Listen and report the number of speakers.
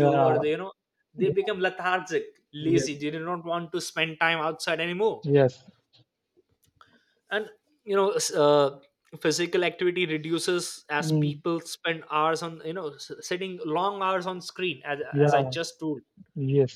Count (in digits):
2